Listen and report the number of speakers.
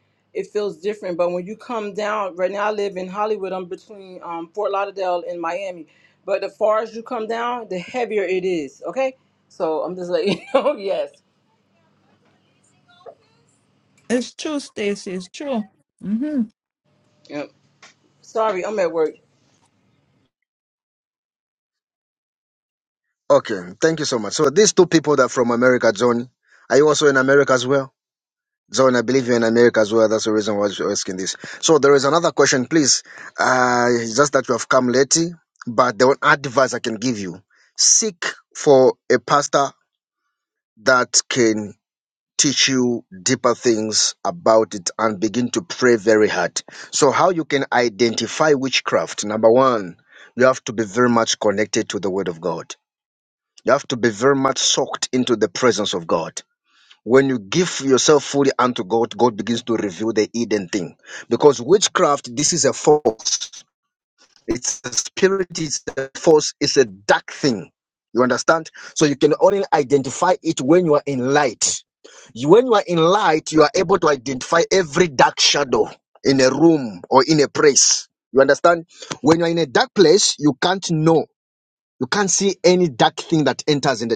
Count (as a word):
three